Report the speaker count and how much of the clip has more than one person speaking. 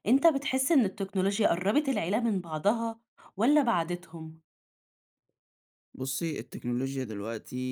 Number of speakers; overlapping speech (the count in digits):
2, no overlap